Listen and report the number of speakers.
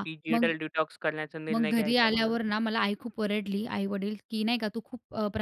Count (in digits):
2